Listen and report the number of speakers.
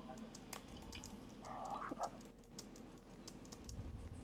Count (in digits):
0